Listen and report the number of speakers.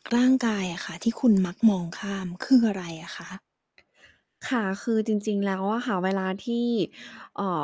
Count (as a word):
two